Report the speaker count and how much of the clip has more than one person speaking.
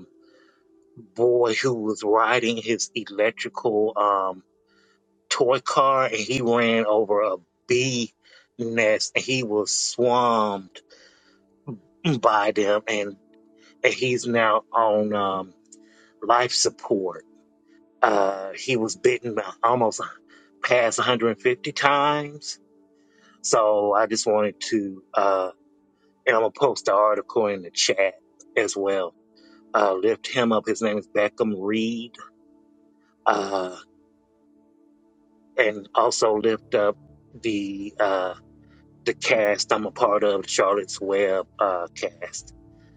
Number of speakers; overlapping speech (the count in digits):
1, no overlap